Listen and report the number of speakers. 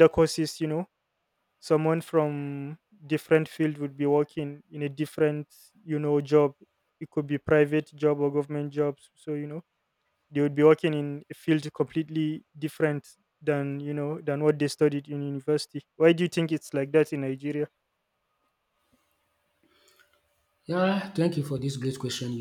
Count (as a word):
two